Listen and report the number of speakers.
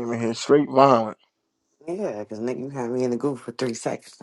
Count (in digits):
2